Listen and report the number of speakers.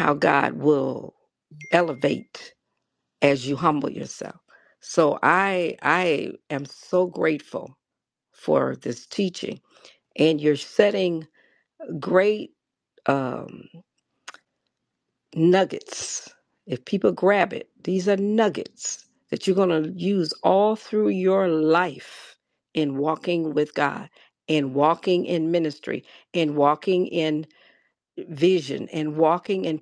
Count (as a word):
one